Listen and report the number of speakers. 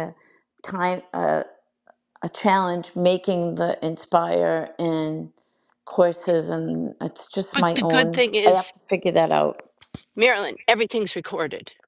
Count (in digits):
2